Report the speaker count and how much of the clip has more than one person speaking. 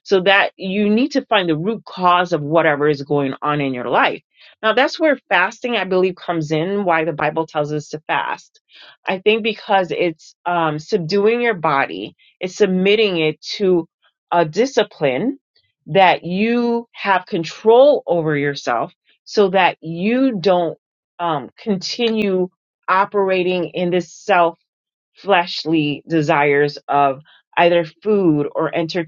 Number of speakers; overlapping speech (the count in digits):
1, no overlap